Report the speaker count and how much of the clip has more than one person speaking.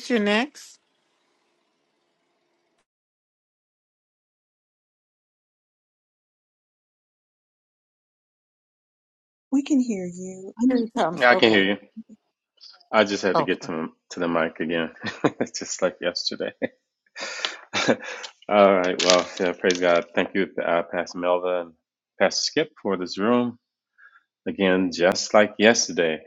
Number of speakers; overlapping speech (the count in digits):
3, about 3%